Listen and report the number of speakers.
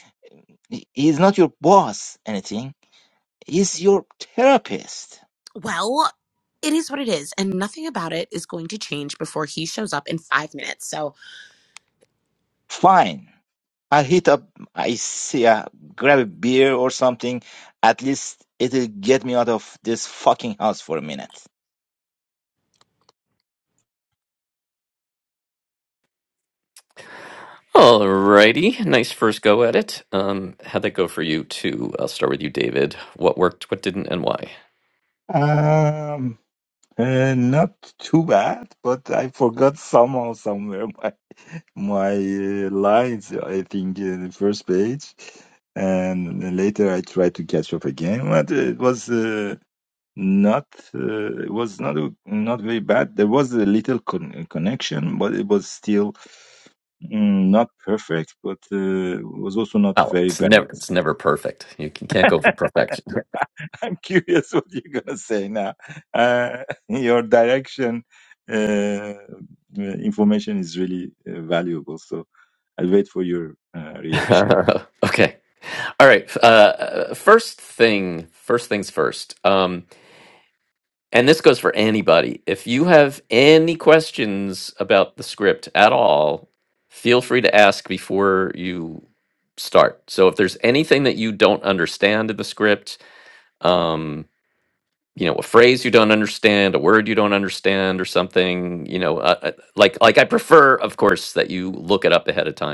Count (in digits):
3